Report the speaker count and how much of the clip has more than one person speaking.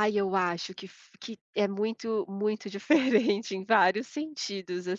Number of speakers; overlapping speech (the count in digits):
1, no overlap